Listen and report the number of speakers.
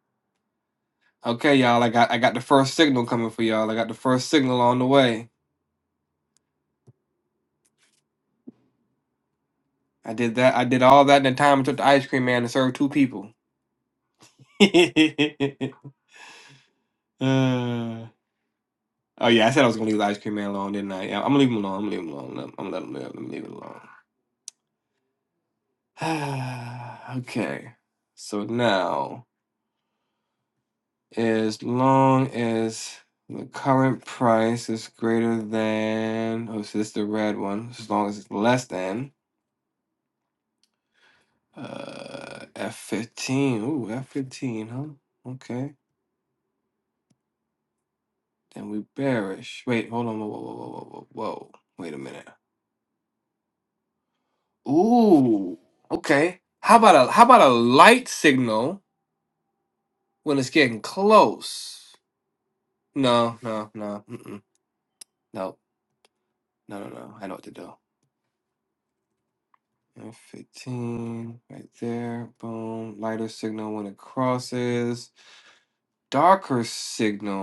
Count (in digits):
1